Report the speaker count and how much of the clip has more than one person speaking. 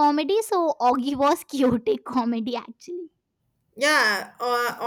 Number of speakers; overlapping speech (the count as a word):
two, no overlap